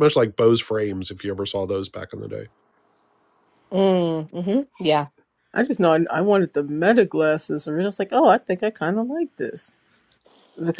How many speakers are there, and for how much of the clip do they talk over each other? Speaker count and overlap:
3, no overlap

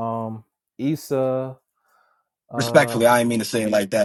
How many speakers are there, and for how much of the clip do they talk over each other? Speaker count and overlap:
2, about 10%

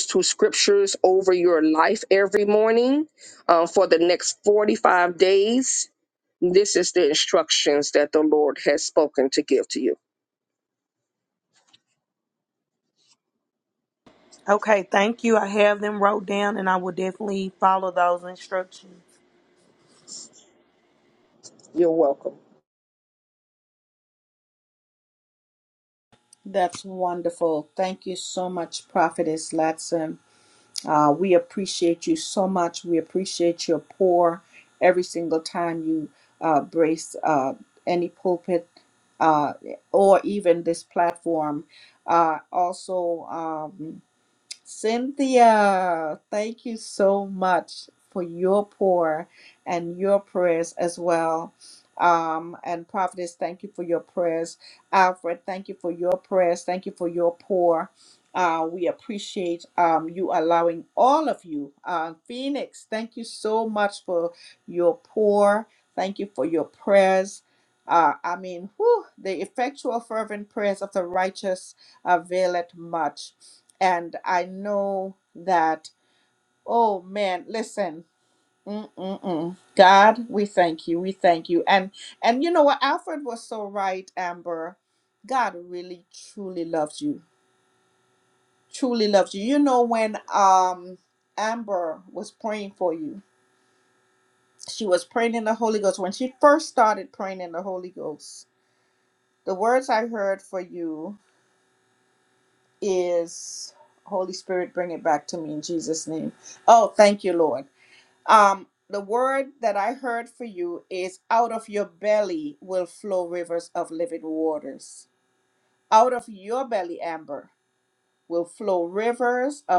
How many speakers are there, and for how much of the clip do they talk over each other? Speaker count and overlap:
3, no overlap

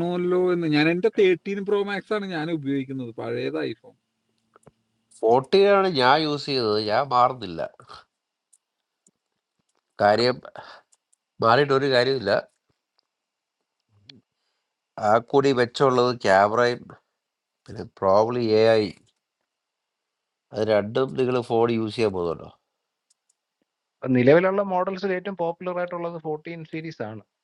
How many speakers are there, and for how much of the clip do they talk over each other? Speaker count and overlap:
3, no overlap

